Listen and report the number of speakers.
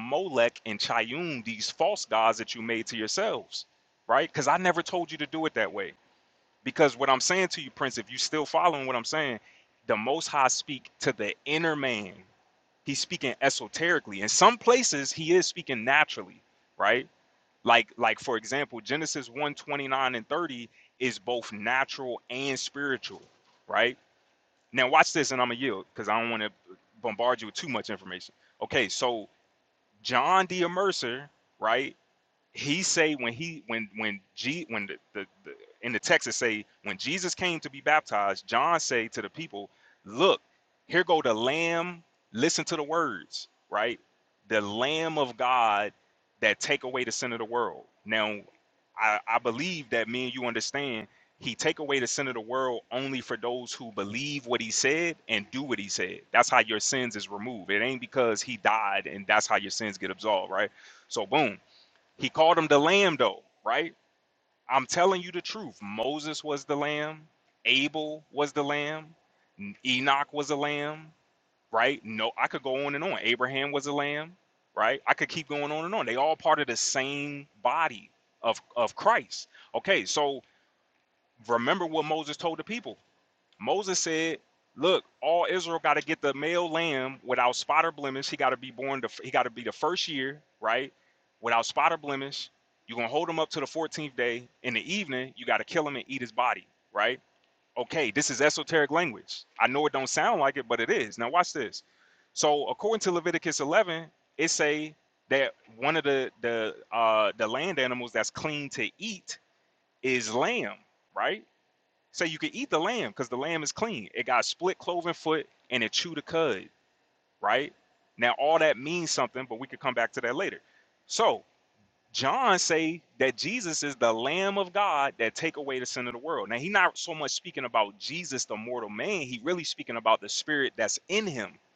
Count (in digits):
1